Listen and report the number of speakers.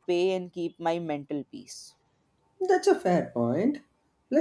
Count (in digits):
2